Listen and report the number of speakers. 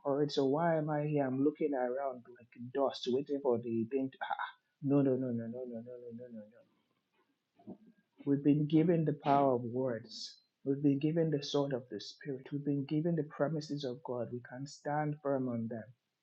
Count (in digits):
1